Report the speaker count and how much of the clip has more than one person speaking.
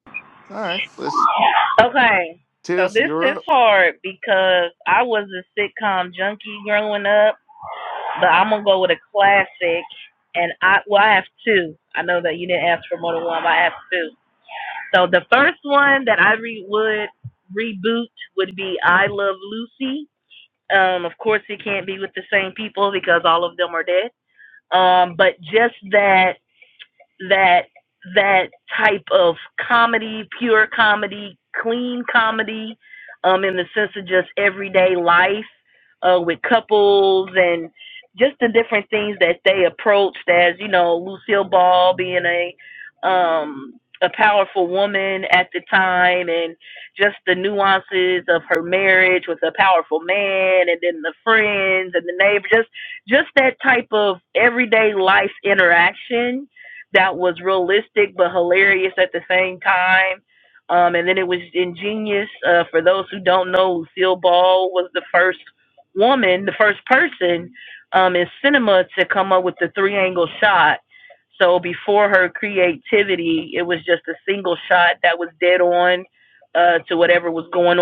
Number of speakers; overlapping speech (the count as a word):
two, about 1%